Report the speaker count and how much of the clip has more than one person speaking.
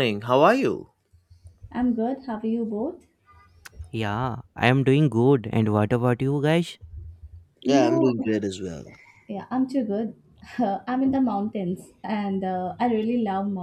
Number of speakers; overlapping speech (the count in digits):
3, about 4%